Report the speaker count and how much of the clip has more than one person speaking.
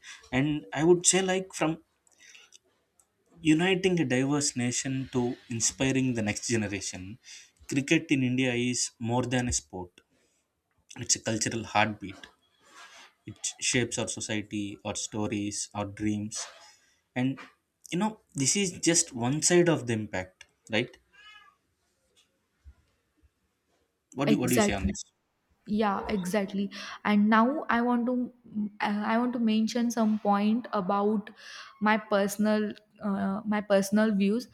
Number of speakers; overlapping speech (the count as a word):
two, about 2%